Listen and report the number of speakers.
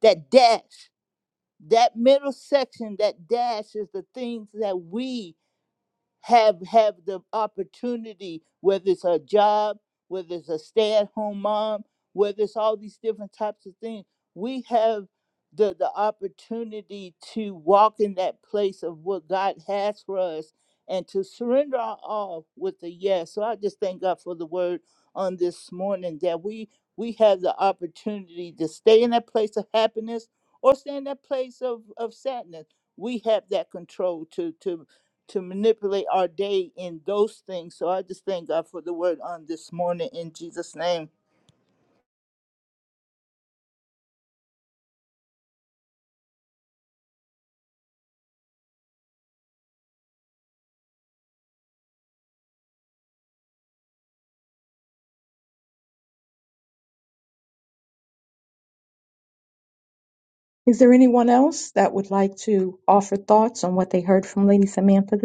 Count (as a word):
two